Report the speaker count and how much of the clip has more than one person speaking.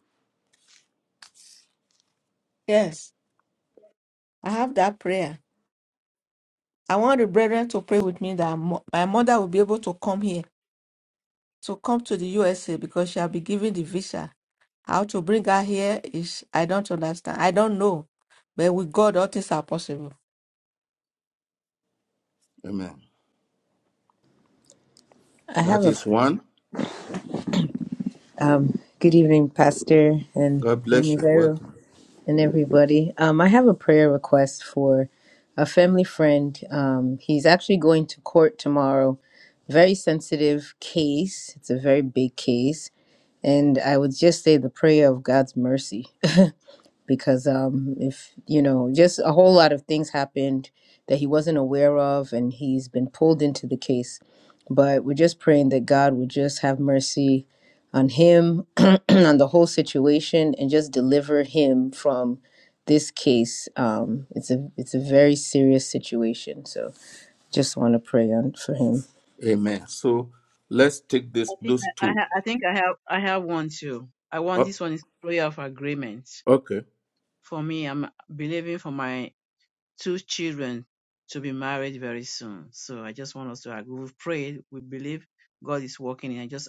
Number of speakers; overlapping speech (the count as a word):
four, about 3%